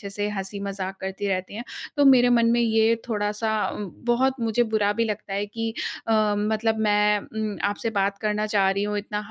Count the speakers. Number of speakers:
1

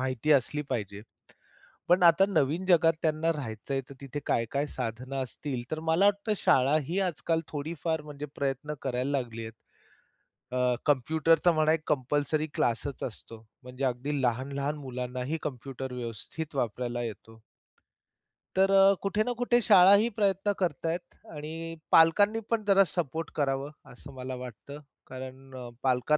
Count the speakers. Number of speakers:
1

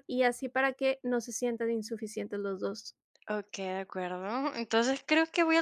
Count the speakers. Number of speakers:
2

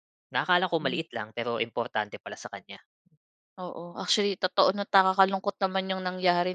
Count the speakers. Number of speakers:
2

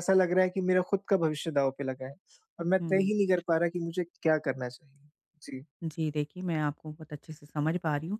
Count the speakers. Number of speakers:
2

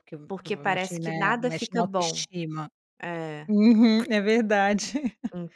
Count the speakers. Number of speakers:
2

